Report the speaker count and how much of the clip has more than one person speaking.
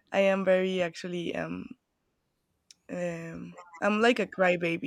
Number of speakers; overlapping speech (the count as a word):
one, no overlap